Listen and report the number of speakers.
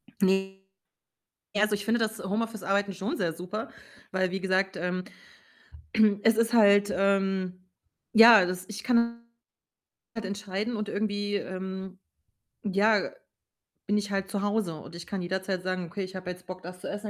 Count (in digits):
1